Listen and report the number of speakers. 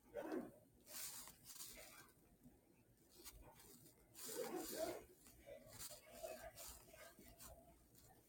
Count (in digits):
0